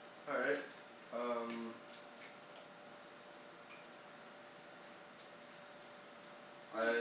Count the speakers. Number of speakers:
one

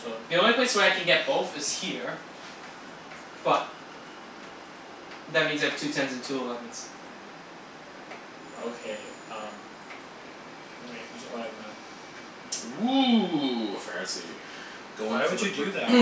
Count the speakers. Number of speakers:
three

